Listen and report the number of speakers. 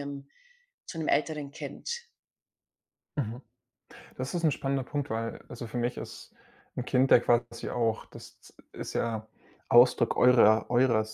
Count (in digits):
2